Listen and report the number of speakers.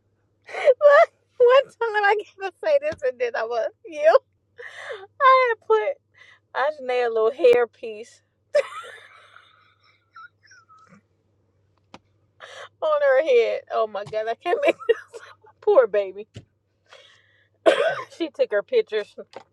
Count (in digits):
1